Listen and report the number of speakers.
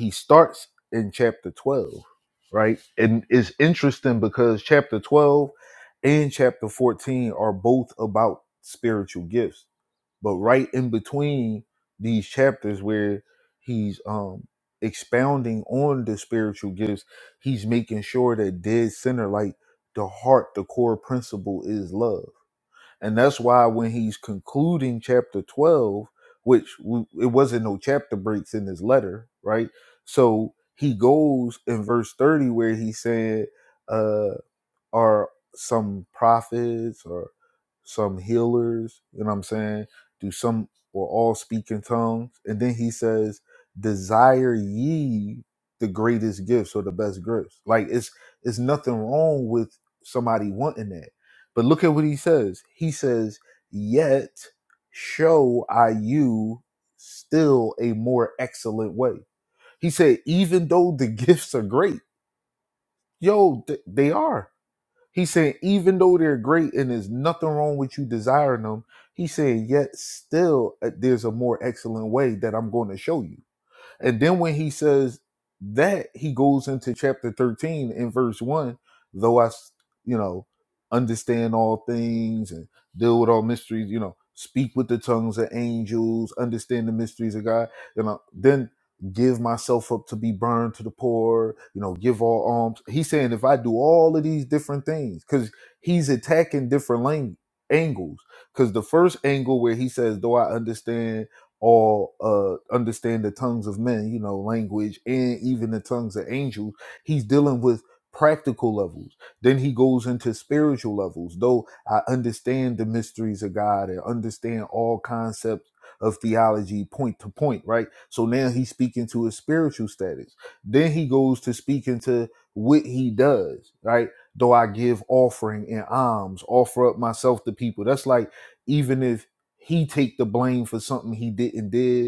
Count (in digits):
1